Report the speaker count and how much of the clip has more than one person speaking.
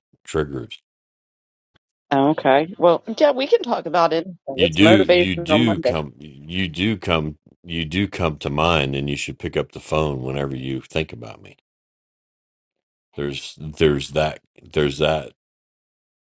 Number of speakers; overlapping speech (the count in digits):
2, about 9%